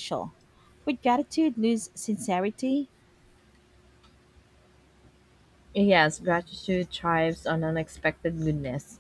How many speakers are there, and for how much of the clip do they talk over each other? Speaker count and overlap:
two, no overlap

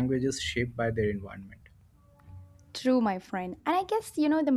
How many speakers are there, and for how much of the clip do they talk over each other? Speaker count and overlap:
two, no overlap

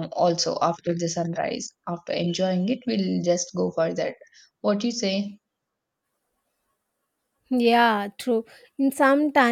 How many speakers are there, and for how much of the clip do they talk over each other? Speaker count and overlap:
two, no overlap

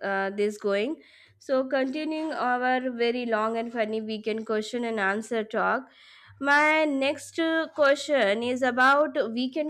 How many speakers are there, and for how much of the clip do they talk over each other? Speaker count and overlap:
one, no overlap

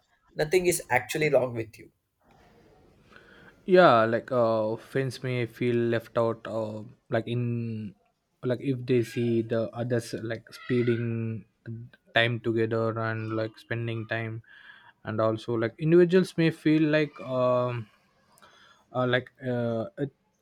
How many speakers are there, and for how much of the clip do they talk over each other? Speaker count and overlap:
two, no overlap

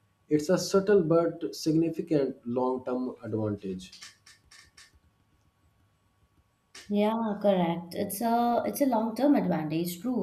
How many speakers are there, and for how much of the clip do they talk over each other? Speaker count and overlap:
two, no overlap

